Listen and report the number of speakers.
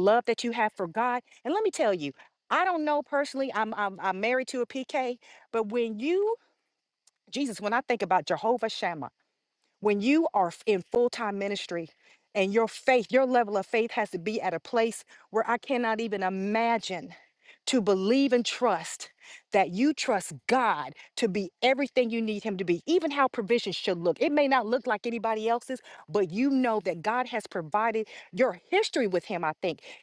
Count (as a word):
one